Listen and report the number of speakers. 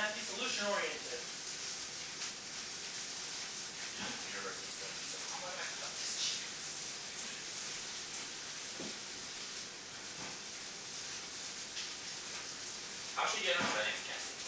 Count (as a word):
two